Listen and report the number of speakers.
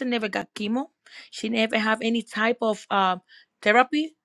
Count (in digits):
1